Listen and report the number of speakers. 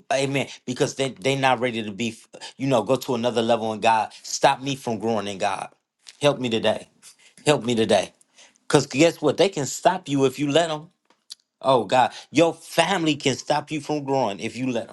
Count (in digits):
1